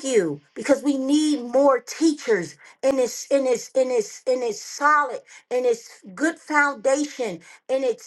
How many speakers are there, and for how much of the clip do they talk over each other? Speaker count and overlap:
1, no overlap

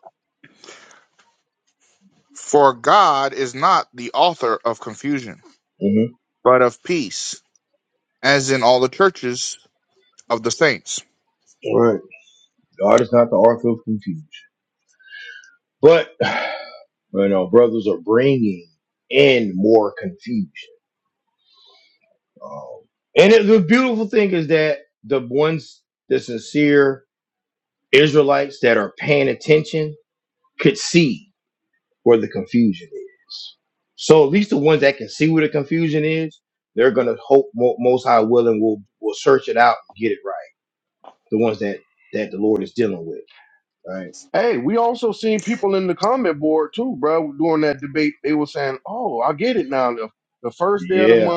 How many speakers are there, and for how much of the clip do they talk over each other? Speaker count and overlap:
3, about 1%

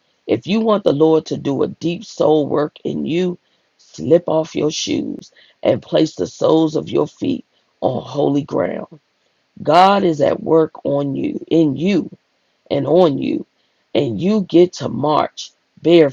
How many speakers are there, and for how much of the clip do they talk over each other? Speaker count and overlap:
1, no overlap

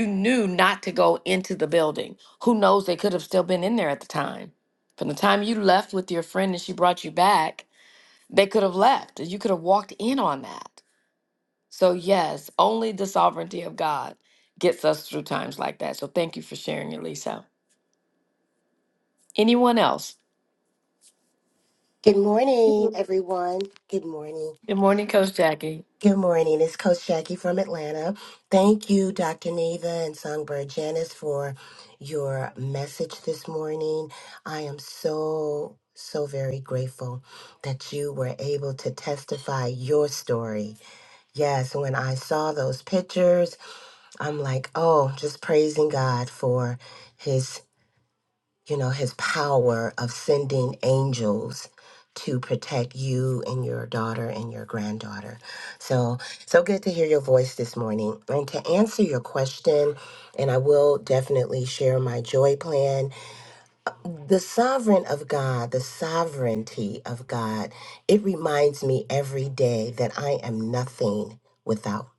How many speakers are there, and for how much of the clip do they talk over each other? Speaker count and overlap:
2, under 1%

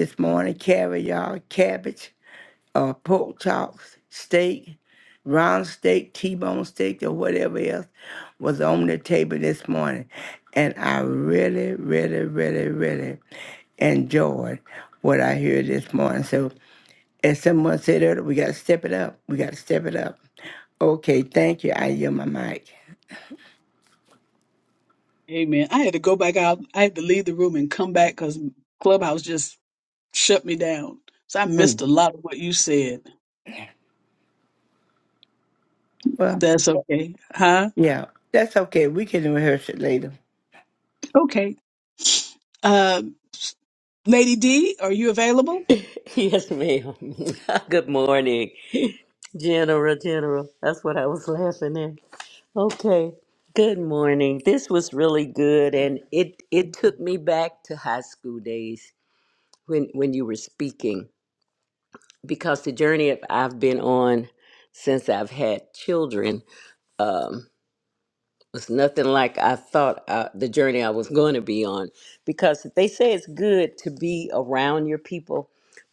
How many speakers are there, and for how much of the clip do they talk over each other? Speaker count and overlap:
3, under 1%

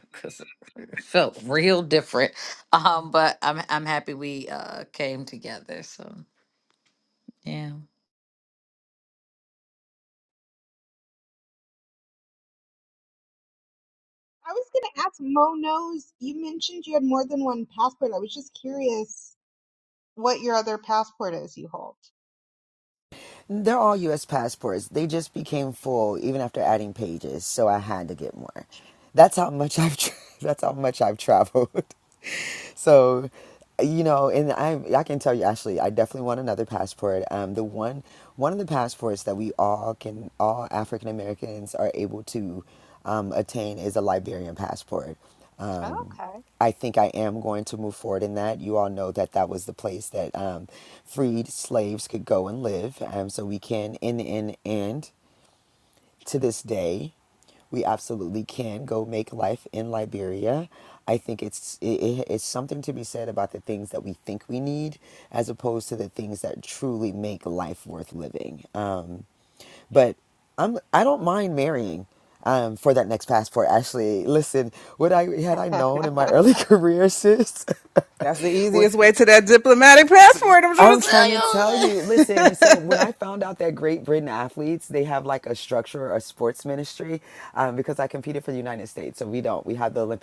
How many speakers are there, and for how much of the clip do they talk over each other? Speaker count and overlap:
4, about 2%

